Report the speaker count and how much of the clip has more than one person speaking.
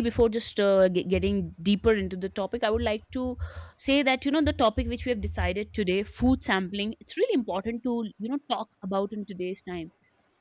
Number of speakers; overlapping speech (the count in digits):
1, no overlap